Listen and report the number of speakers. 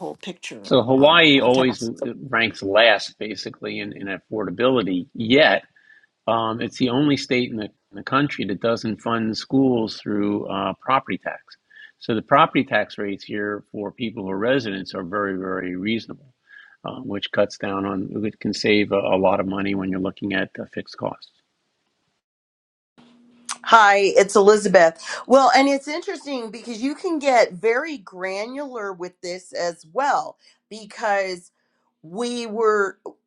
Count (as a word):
three